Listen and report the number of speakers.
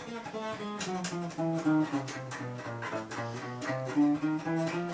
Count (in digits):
0